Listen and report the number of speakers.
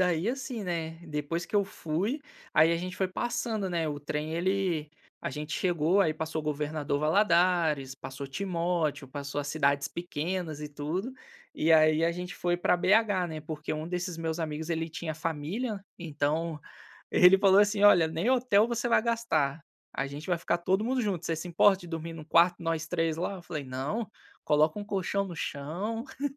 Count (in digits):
1